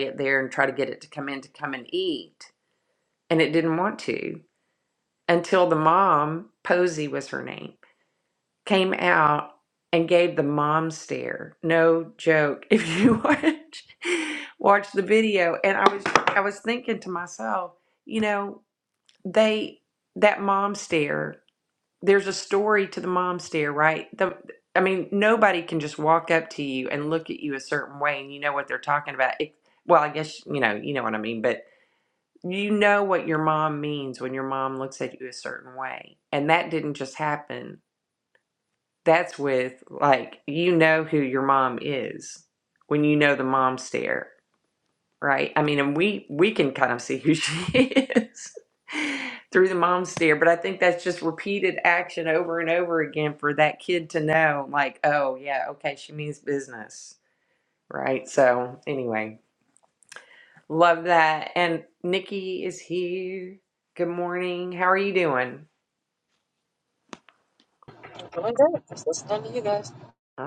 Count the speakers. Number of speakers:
2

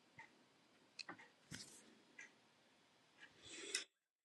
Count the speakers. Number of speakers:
0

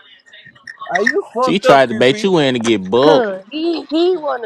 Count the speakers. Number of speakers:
3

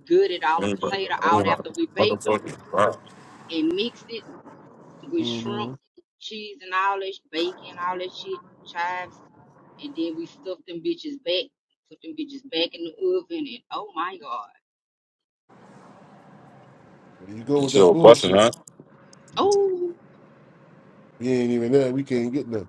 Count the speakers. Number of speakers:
3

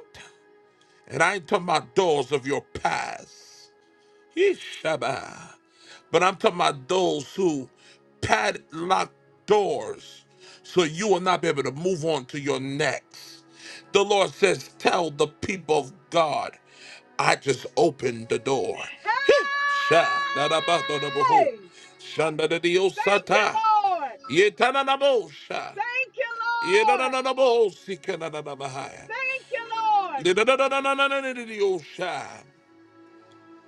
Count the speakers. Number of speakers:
2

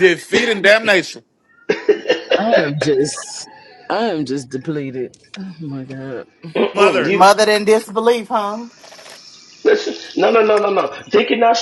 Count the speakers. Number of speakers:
4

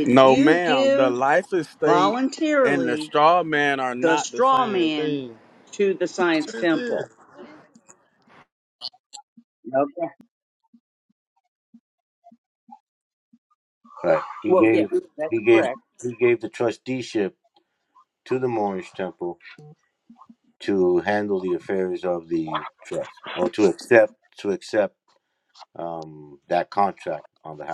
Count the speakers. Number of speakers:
3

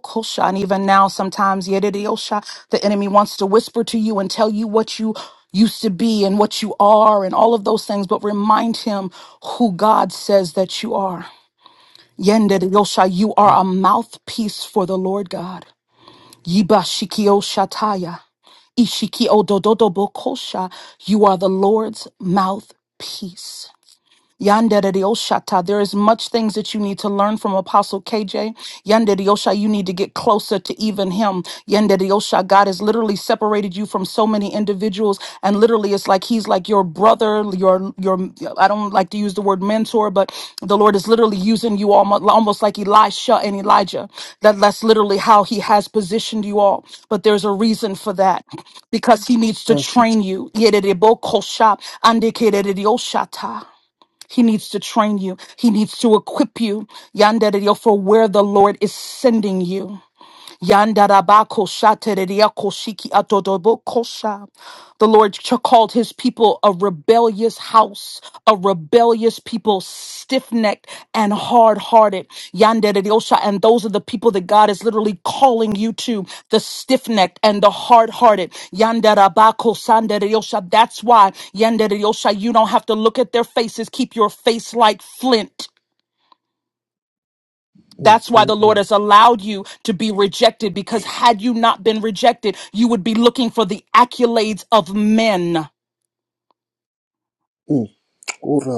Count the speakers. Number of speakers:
2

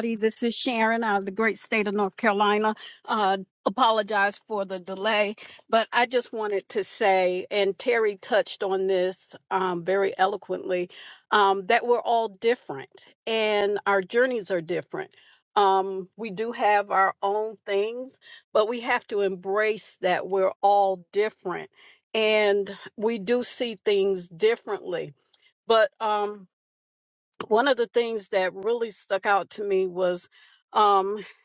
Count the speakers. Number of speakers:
1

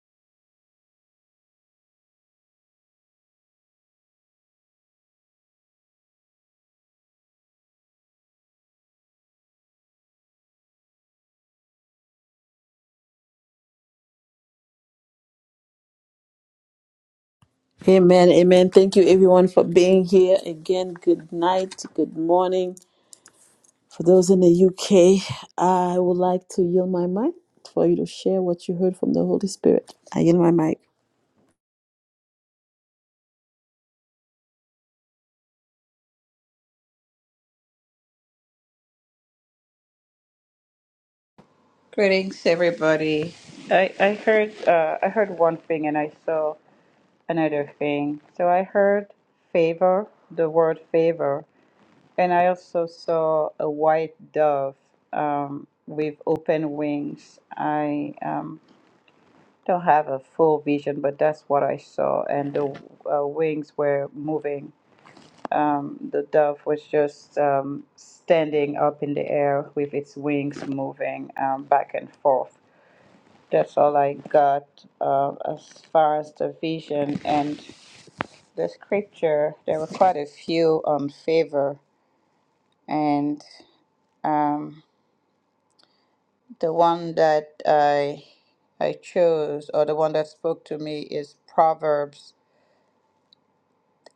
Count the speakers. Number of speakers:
2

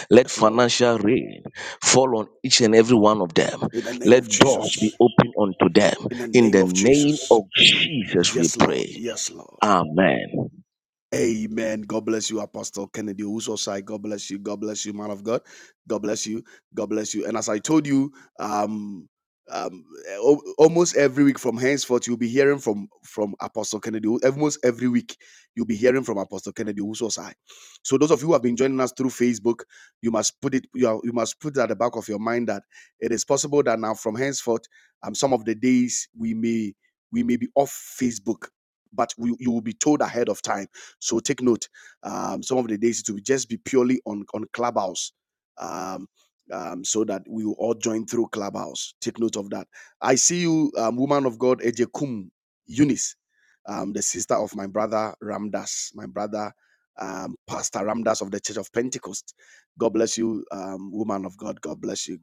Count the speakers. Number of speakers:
2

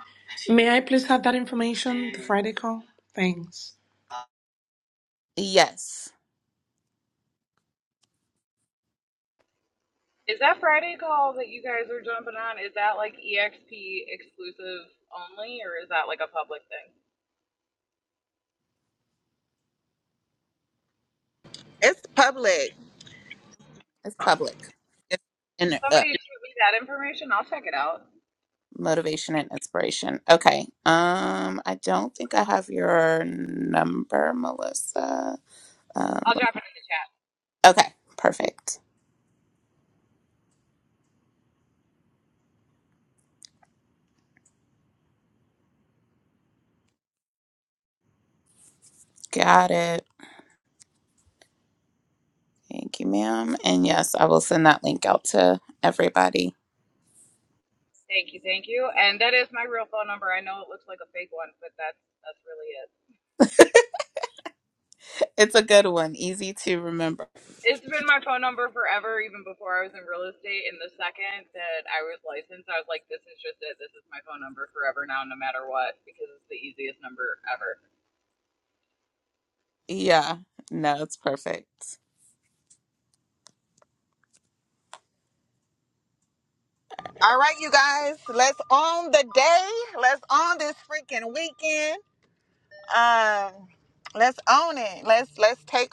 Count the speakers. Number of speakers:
4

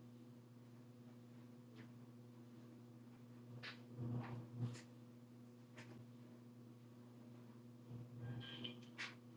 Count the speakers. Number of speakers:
0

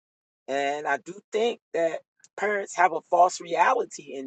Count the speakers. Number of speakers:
1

